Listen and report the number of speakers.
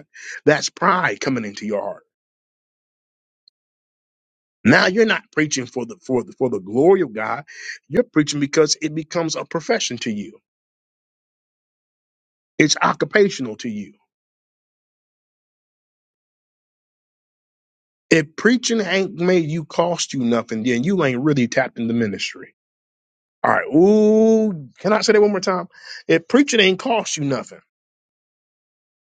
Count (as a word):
one